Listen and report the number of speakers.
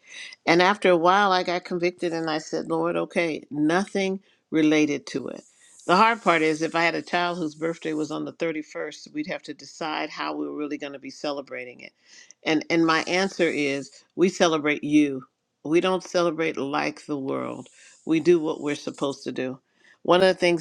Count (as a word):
one